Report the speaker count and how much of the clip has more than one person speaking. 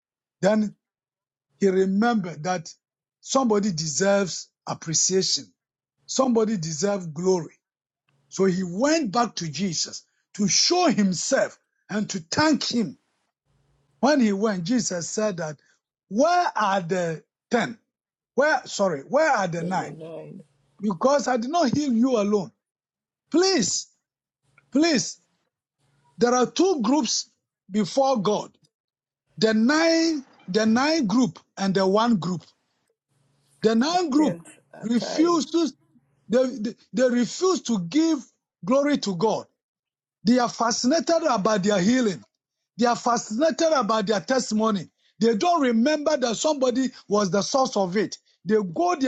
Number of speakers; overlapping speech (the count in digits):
2, about 2%